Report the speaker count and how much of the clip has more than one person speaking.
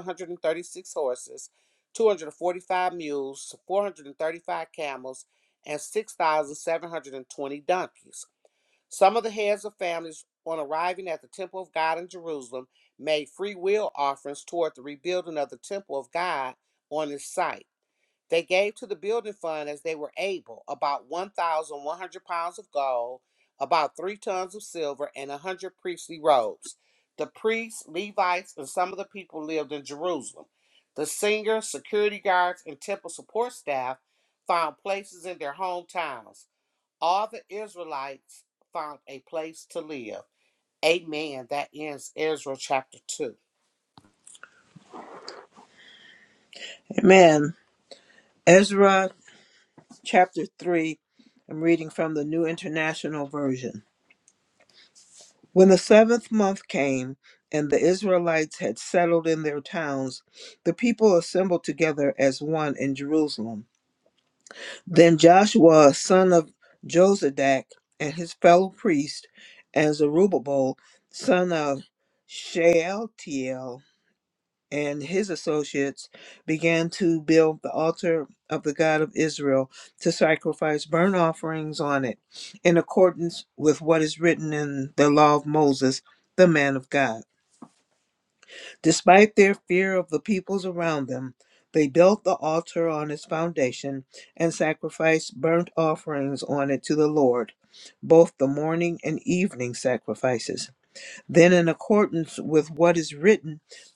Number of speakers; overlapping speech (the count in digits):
2, no overlap